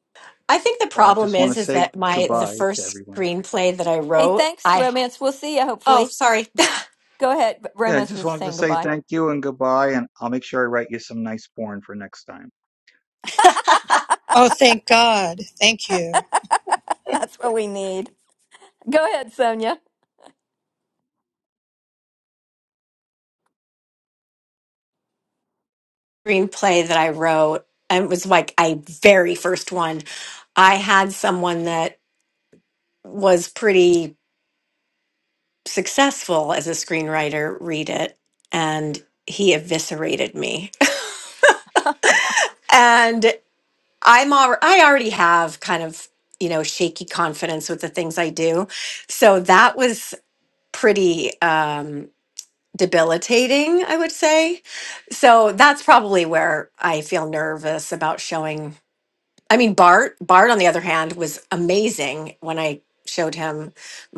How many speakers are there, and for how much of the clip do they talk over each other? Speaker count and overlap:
four, about 7%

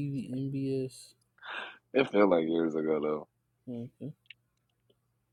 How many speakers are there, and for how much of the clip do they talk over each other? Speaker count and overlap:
two, no overlap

